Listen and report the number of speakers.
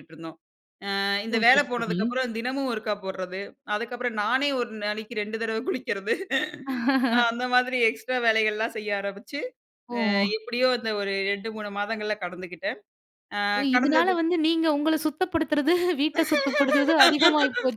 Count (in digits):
2